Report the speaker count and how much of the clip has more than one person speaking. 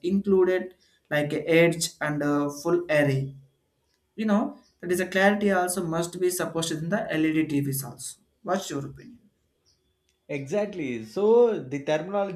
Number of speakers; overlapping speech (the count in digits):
2, no overlap